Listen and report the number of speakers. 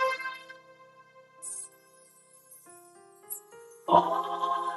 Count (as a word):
zero